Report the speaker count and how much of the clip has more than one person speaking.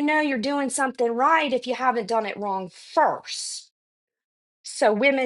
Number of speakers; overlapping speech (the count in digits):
1, no overlap